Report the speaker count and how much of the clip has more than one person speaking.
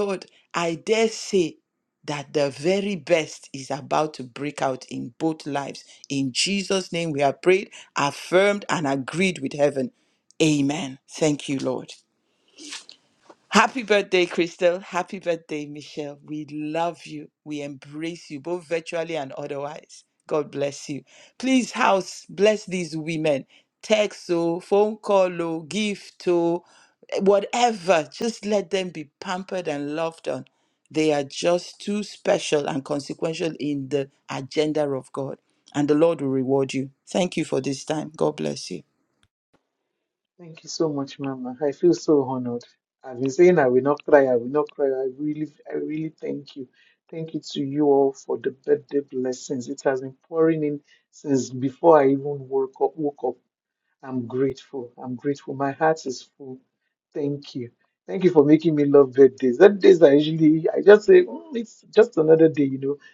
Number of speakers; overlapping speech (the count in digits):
2, no overlap